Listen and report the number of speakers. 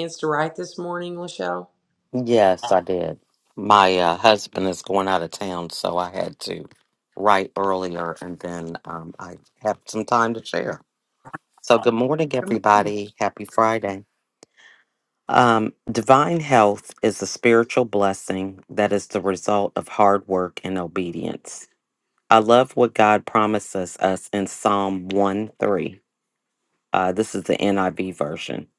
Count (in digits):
2